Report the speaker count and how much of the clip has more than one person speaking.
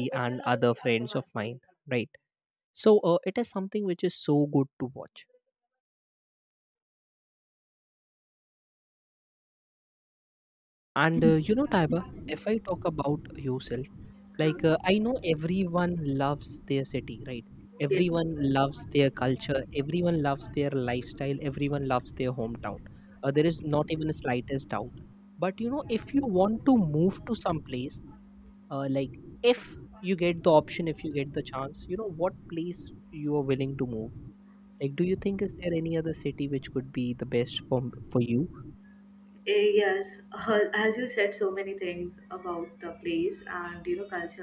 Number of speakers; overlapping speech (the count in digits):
2, about 2%